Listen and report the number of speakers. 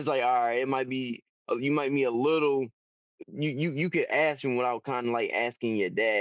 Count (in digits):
1